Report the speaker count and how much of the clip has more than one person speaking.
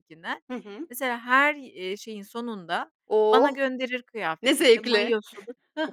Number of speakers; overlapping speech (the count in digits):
2, about 18%